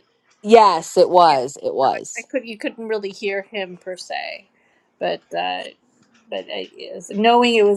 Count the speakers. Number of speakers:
2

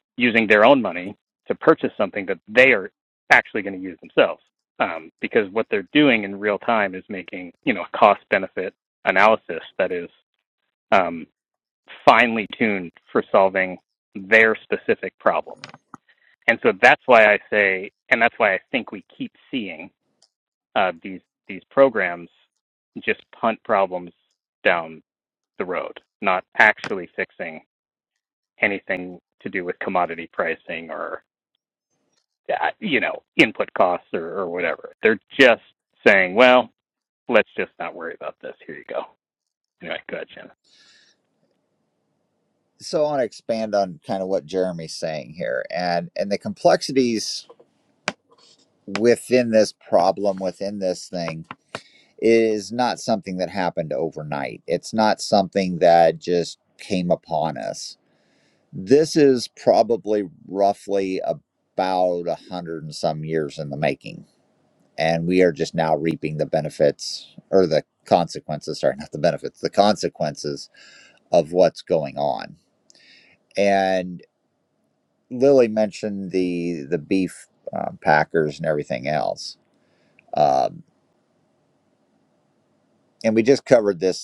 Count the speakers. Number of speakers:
2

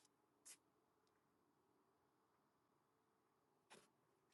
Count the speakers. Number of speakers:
0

